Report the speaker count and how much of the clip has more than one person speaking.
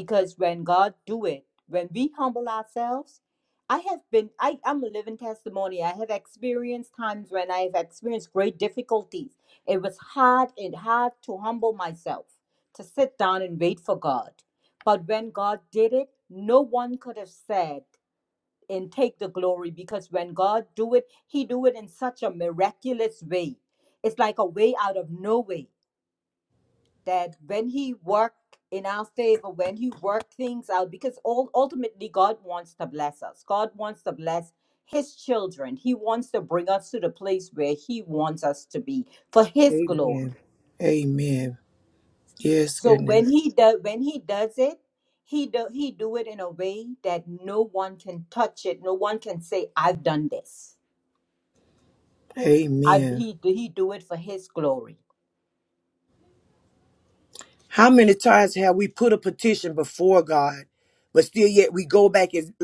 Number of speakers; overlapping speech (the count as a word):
two, about 2%